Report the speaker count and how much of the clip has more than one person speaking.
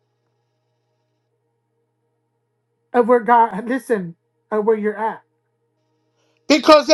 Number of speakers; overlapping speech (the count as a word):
one, no overlap